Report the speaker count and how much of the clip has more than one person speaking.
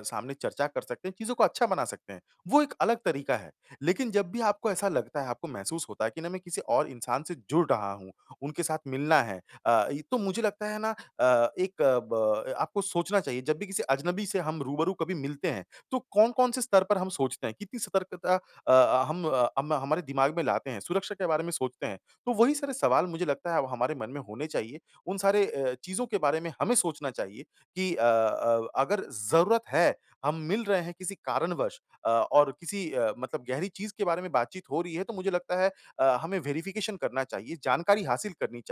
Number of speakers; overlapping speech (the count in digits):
1, no overlap